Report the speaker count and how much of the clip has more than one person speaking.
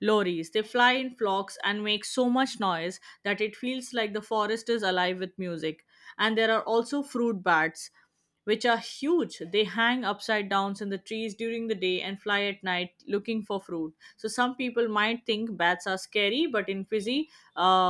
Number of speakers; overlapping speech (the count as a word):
one, no overlap